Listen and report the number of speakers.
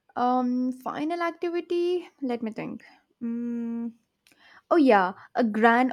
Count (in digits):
1